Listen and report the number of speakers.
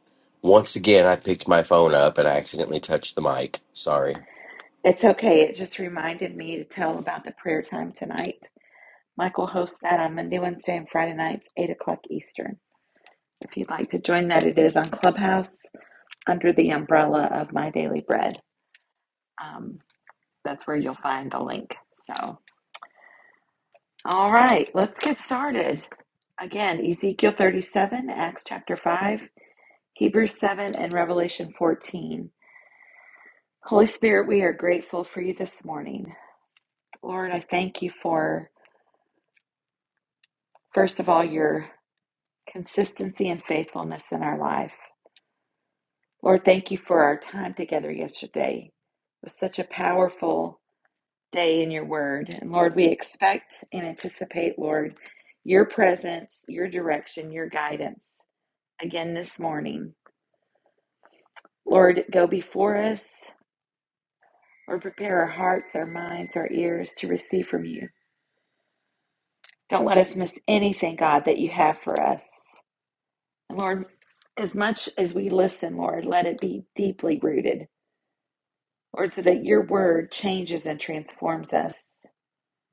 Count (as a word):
two